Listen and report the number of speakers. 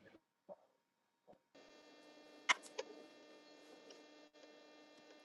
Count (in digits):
0